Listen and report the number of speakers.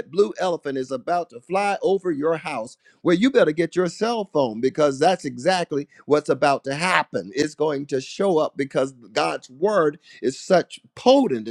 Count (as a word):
one